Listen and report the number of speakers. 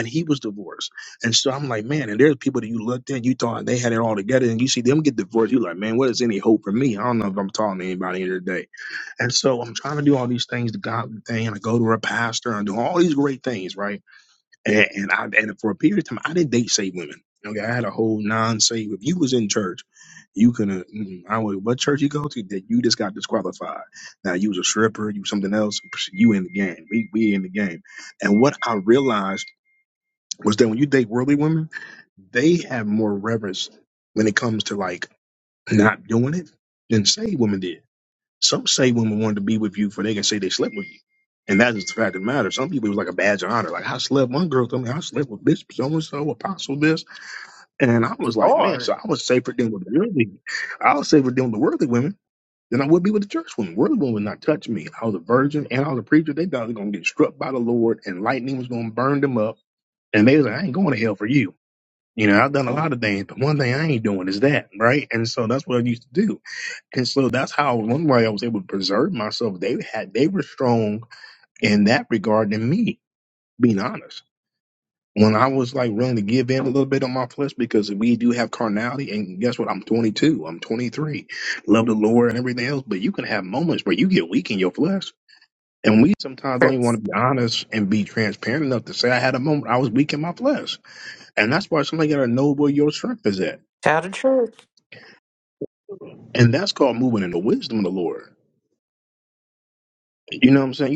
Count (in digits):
2